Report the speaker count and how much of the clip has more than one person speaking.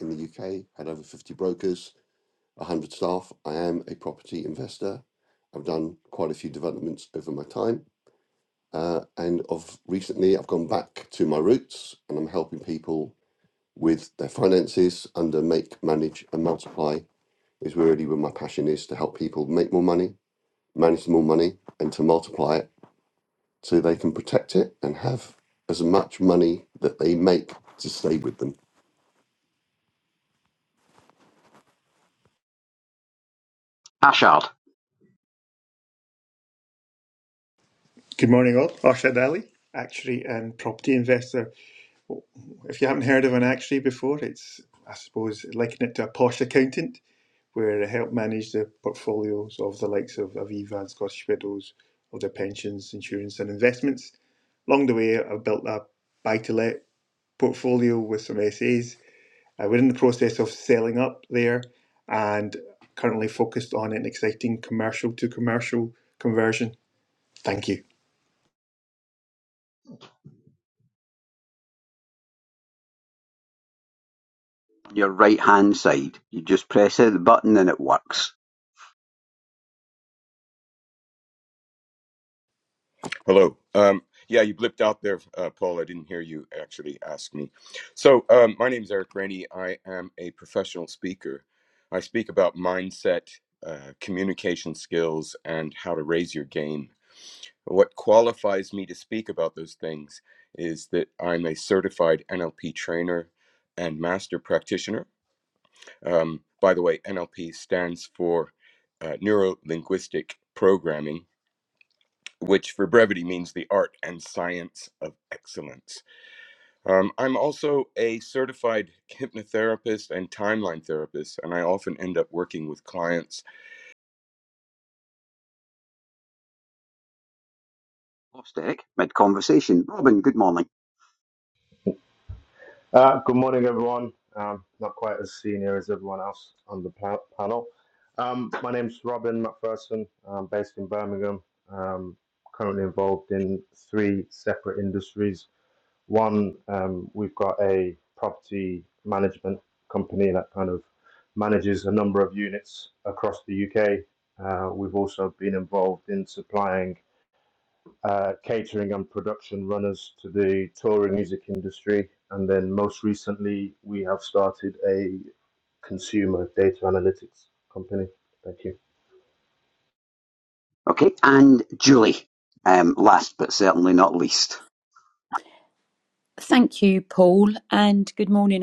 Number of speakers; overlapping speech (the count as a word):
six, no overlap